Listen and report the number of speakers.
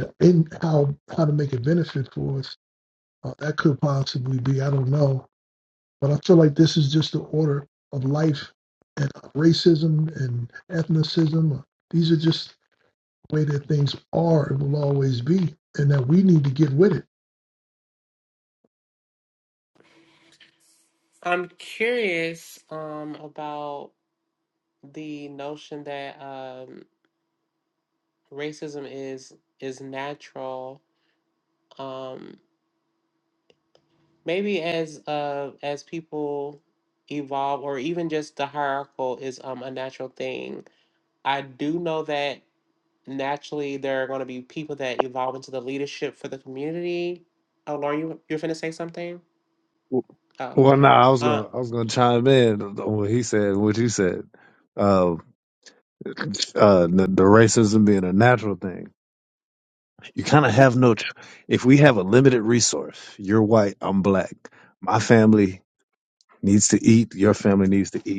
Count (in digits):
3